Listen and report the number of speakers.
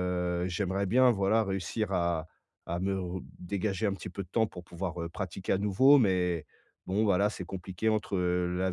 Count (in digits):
1